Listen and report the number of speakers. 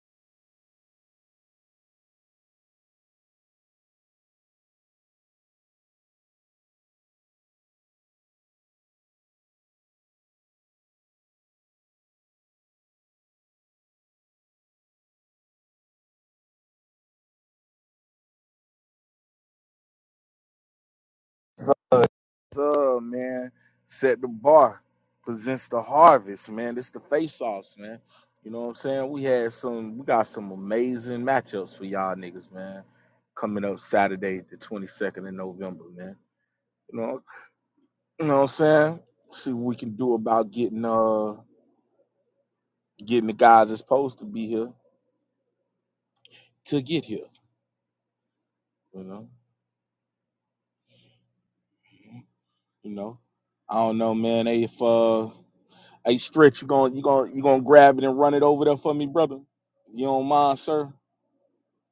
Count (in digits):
1